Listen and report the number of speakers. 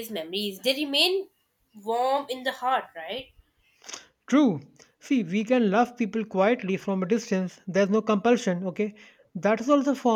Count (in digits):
2